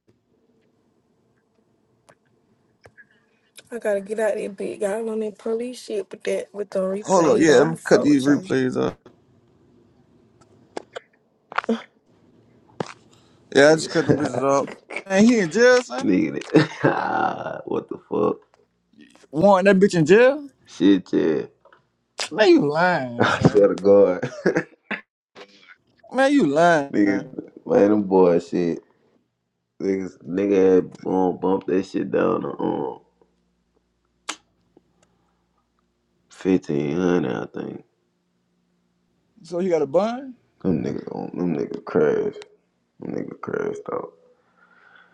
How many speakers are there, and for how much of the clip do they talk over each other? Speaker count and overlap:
3, about 6%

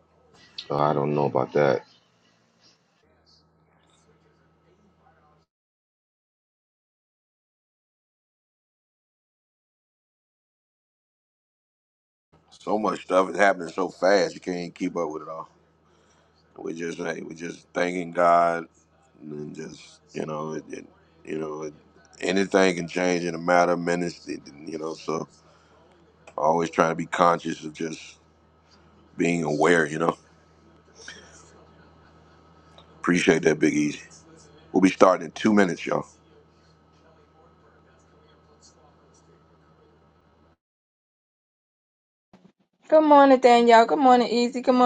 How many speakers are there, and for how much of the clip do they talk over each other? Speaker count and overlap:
3, no overlap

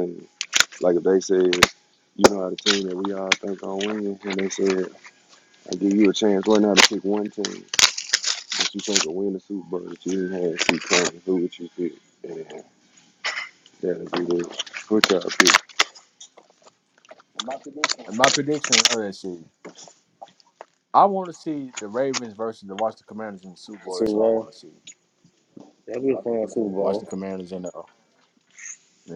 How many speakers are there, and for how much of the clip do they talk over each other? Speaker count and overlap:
3, about 2%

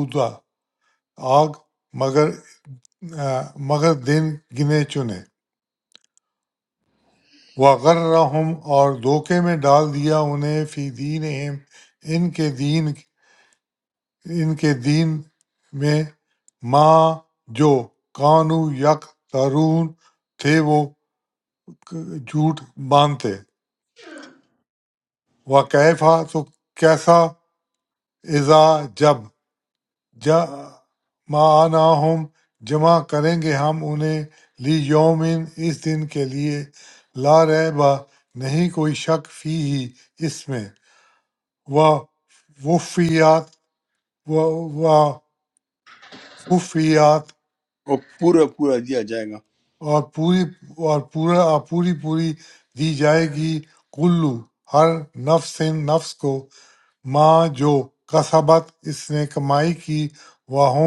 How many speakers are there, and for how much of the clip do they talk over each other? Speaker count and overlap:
2, no overlap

